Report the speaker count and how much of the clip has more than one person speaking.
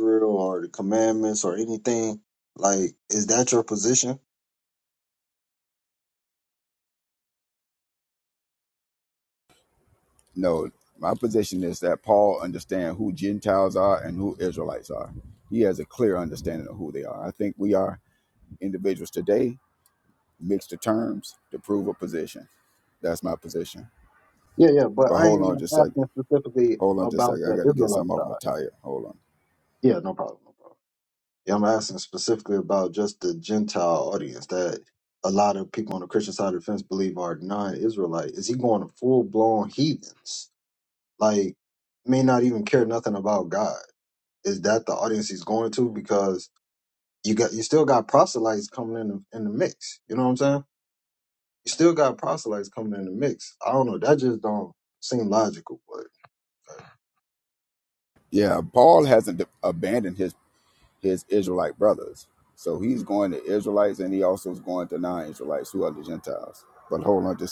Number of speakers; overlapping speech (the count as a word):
two, about 4%